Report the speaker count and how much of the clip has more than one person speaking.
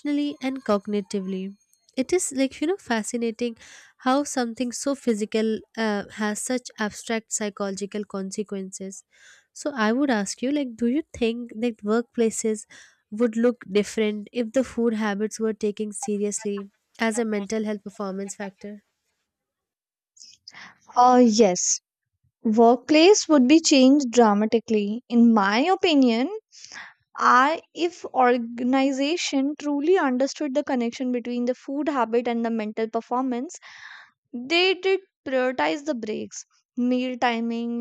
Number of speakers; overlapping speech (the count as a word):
two, no overlap